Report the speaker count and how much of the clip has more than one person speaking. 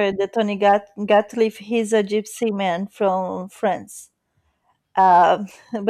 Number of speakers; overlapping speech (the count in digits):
1, no overlap